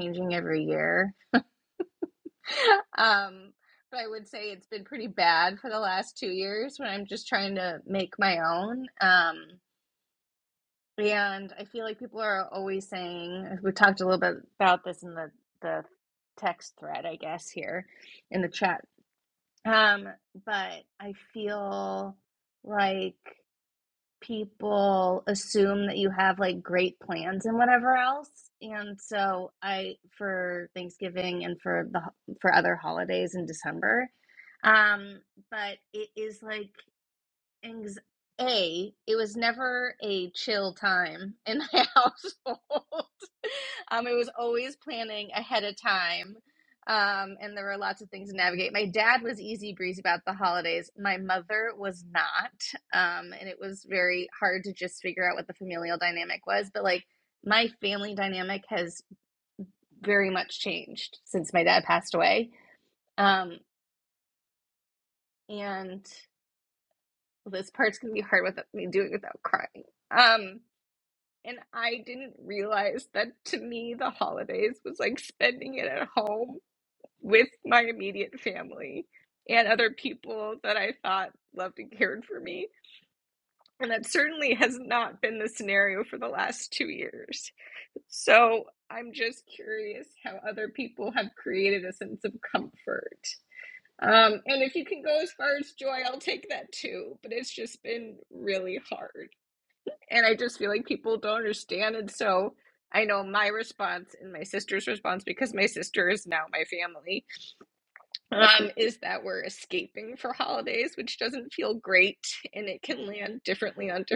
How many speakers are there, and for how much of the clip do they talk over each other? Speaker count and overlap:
one, no overlap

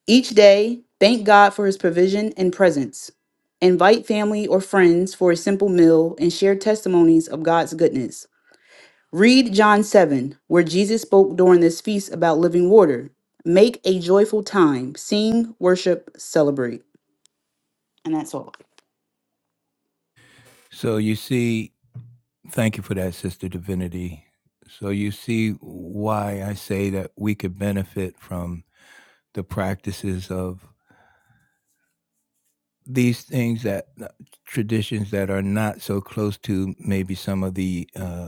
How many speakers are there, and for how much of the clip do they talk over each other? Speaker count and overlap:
two, no overlap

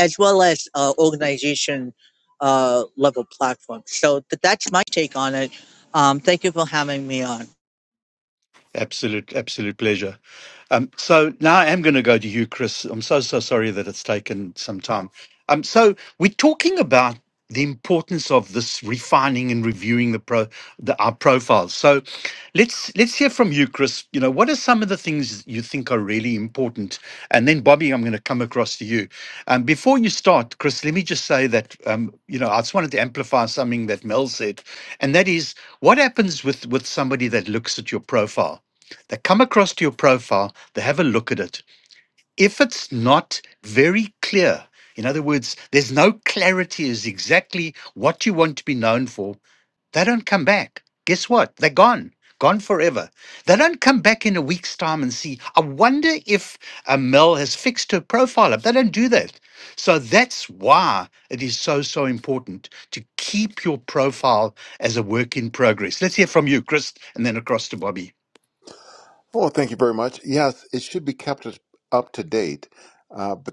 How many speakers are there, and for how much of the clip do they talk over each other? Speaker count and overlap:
three, no overlap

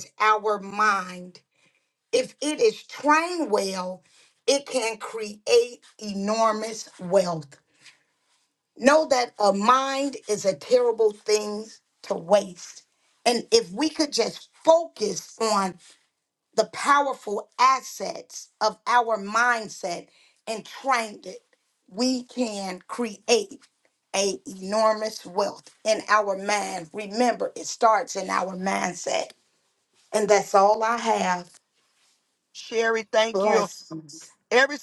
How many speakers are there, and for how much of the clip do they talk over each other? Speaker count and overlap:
two, about 1%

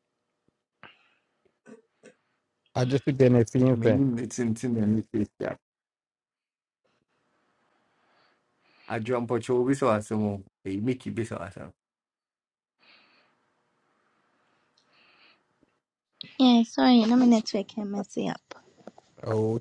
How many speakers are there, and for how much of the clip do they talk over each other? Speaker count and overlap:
three, about 1%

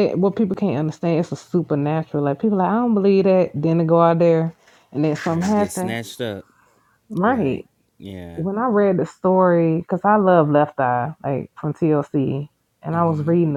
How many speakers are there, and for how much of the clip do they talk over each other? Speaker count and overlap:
two, about 12%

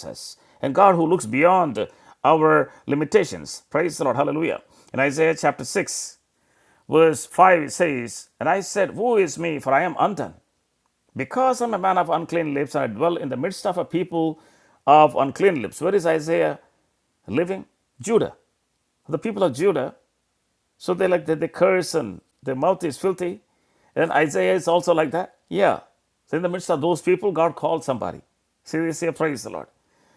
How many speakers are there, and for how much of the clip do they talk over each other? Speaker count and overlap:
one, no overlap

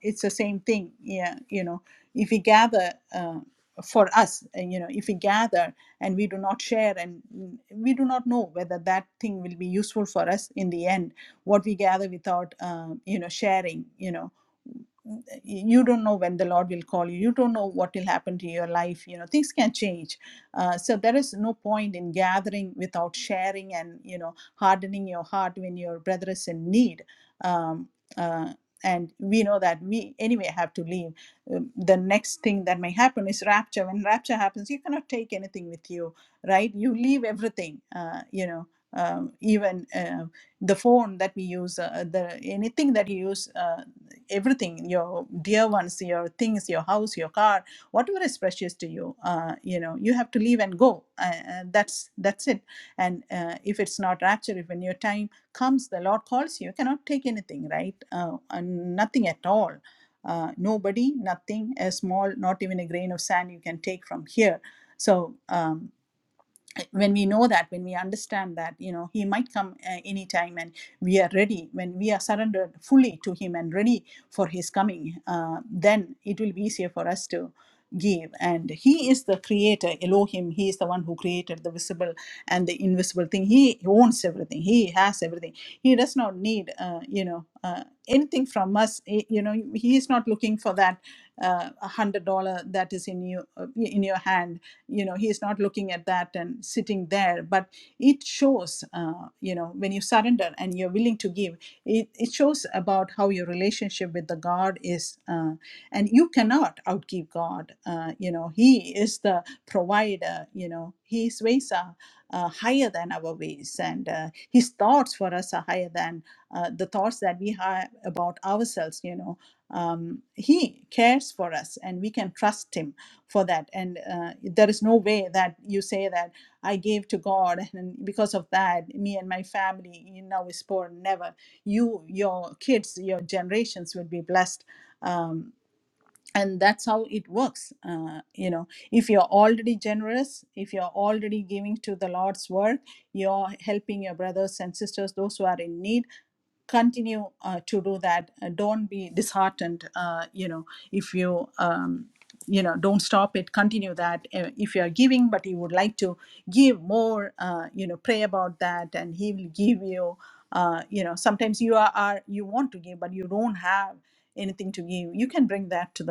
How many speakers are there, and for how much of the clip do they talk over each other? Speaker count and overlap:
one, no overlap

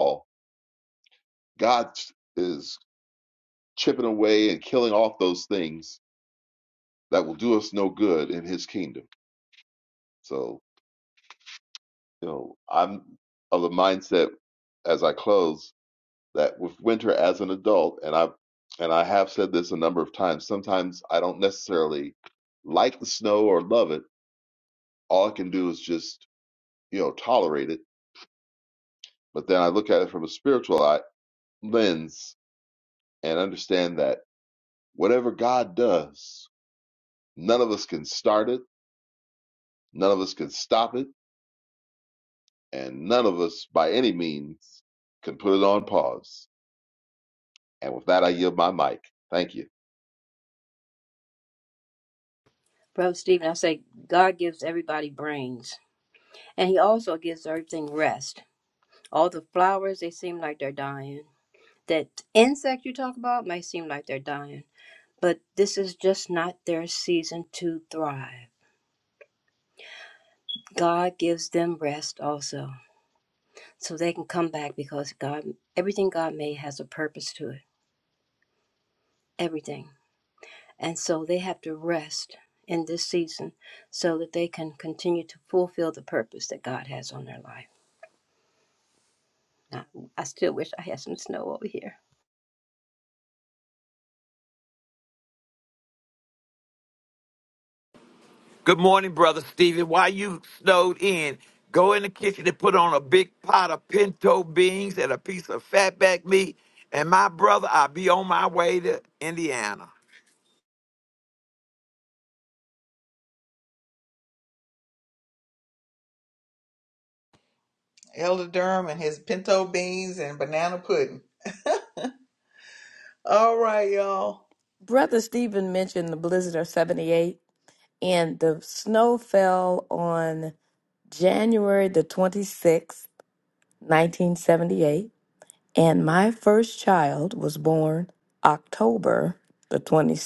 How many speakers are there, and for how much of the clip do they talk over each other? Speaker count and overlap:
five, no overlap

